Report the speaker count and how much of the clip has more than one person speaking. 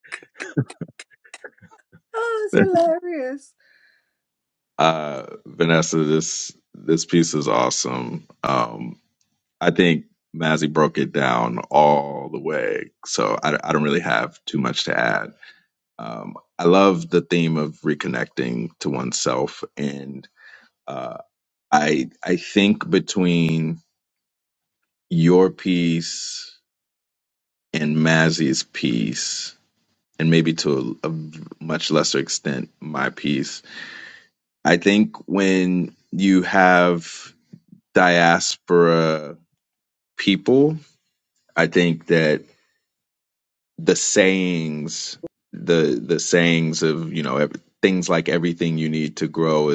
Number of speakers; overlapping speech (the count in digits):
2, no overlap